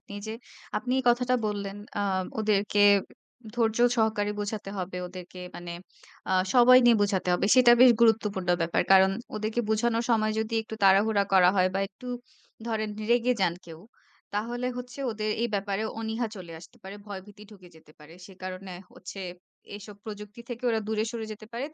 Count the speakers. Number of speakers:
1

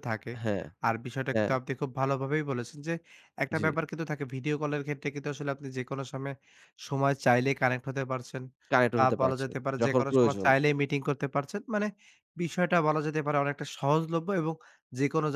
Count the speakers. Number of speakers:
2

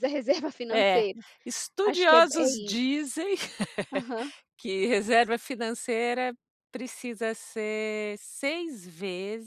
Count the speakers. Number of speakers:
2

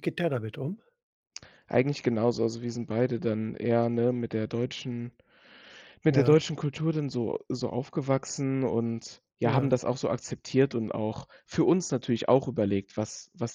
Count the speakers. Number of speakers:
2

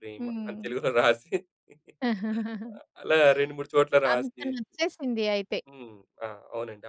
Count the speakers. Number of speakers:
2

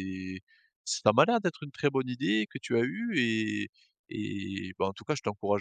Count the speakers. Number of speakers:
1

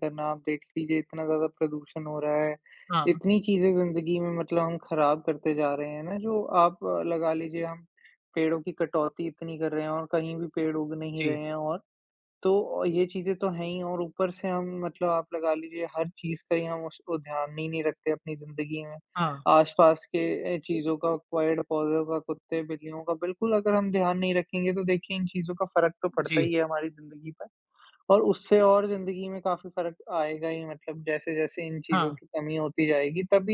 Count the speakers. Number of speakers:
2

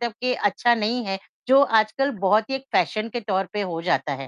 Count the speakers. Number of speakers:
1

